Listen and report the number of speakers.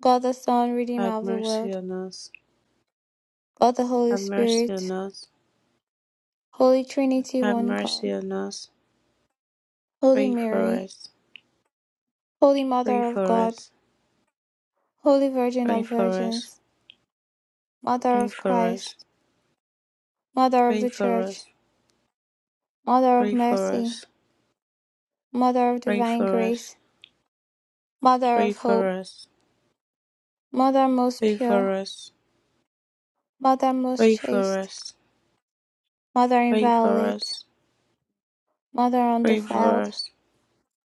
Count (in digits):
2